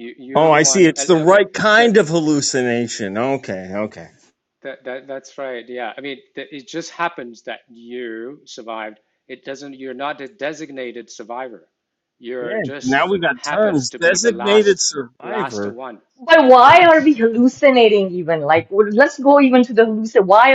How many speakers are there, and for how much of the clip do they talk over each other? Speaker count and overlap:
3, about 22%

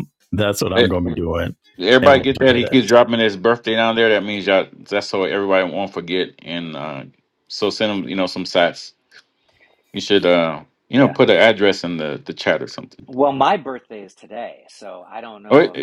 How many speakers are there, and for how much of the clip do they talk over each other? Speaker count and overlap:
3, about 9%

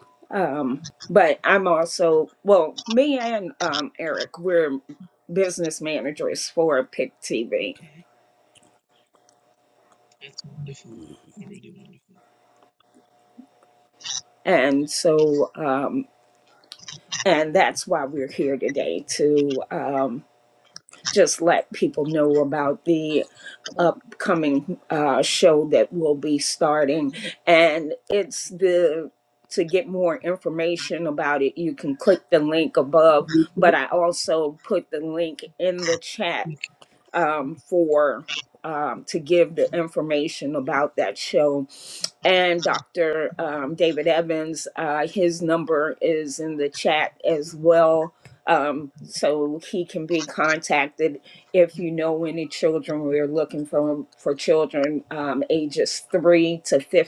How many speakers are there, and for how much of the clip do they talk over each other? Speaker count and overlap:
2, under 1%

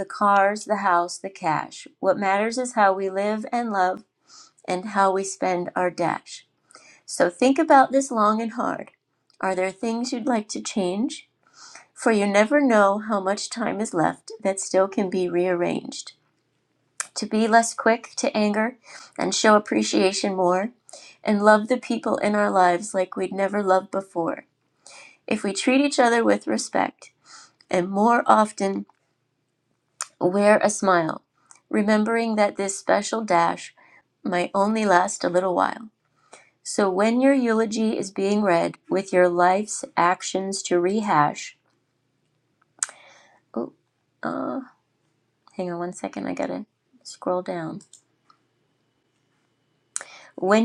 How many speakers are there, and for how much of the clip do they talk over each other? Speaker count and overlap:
1, no overlap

